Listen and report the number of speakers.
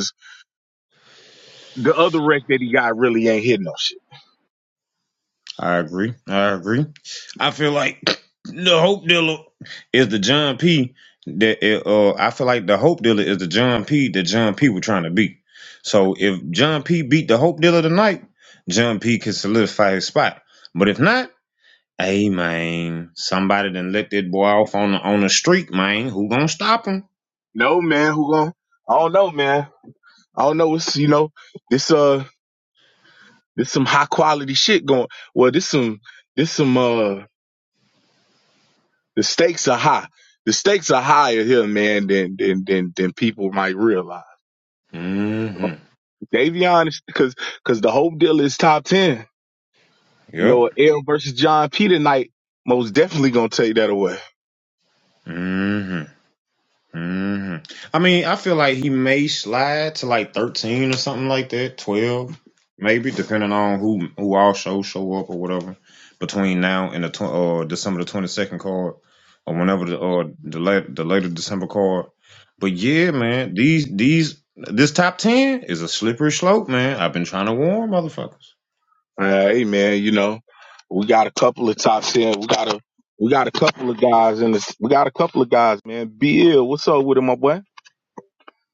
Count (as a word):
two